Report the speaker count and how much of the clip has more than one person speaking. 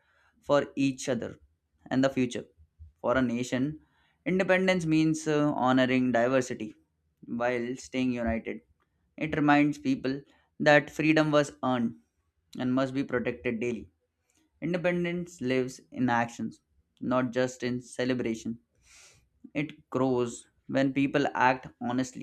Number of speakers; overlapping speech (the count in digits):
1, no overlap